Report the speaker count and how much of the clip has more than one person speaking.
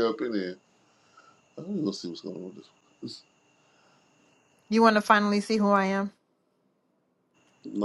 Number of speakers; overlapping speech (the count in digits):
2, no overlap